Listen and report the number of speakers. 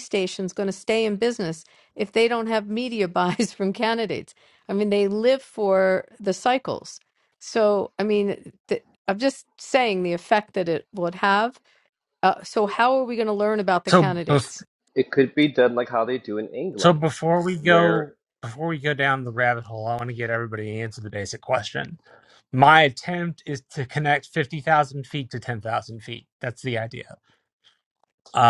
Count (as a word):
three